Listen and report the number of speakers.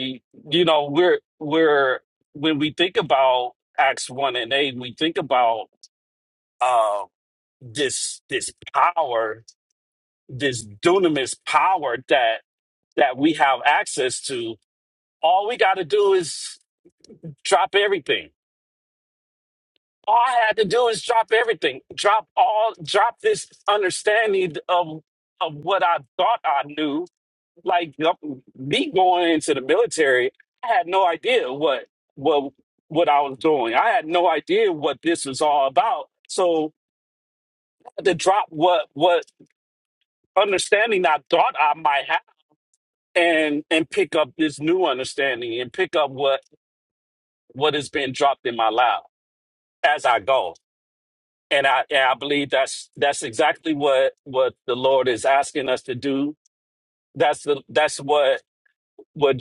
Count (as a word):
one